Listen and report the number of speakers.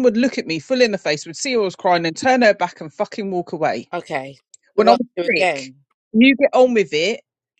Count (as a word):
two